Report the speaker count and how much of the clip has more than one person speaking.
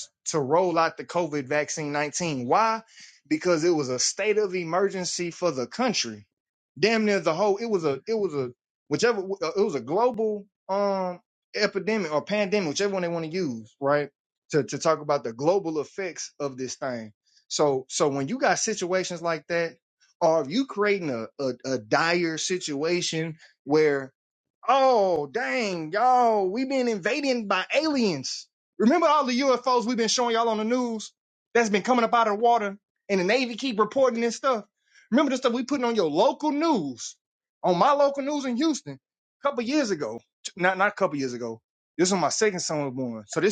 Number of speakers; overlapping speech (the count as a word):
one, no overlap